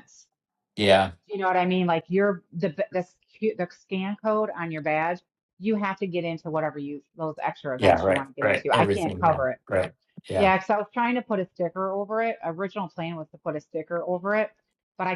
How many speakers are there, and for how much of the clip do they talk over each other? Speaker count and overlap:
two, about 13%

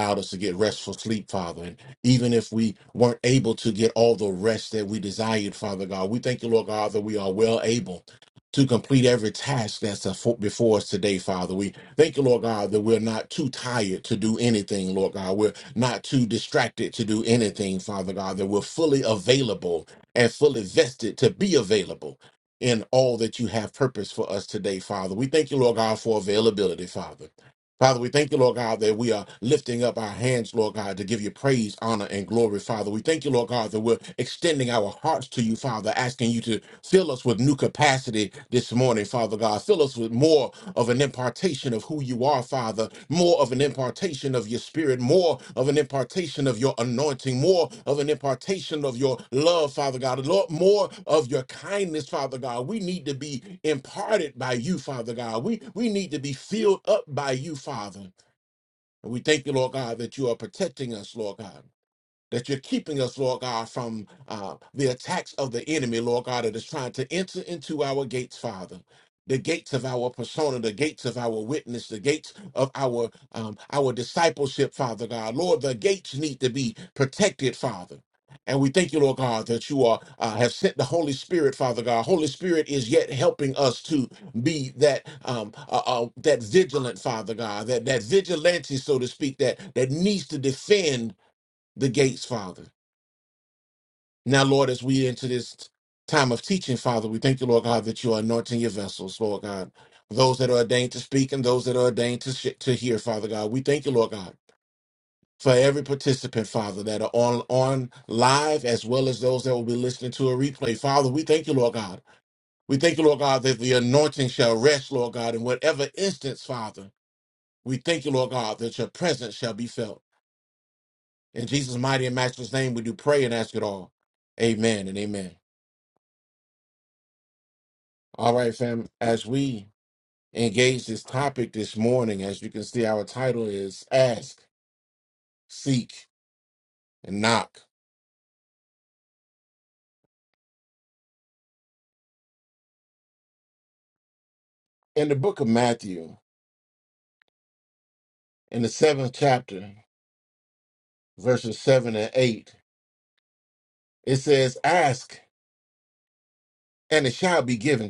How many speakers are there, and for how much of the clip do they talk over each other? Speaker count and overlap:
one, no overlap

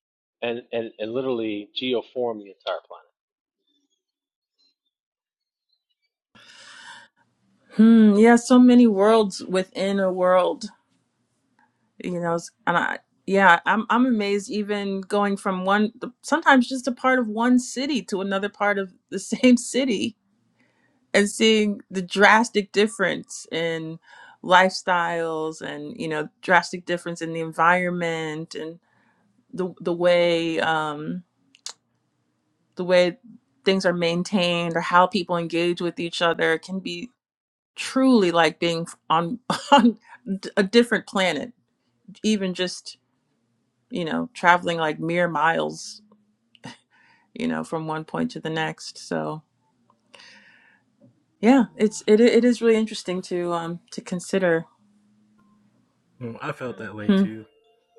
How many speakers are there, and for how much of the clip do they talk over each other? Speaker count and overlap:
three, under 1%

